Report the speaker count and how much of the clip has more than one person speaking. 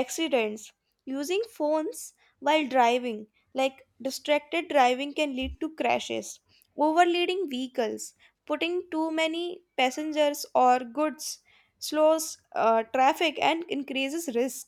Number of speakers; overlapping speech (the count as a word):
one, no overlap